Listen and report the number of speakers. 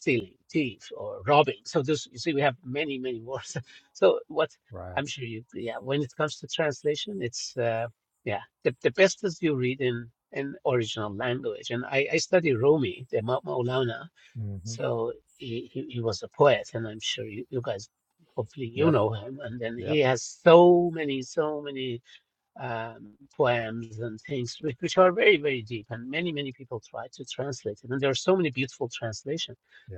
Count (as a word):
two